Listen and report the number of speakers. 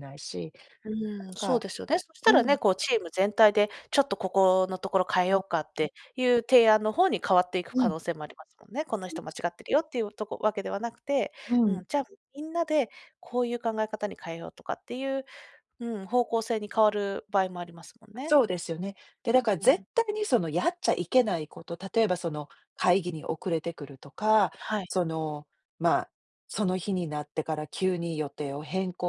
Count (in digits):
2